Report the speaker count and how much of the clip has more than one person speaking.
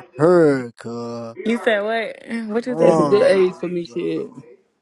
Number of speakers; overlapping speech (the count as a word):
three, about 16%